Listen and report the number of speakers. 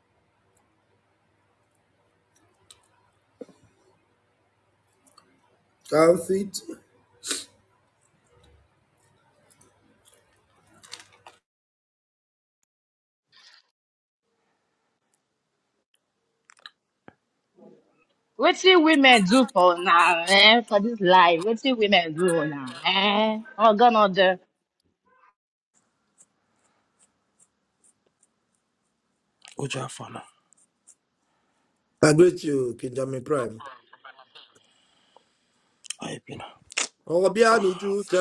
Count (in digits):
3